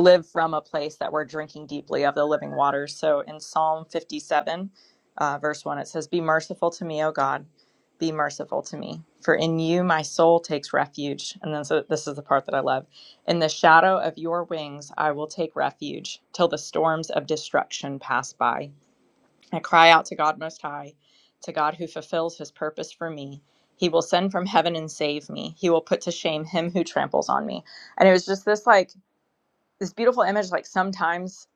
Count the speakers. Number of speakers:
1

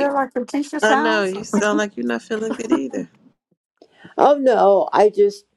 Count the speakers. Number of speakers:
3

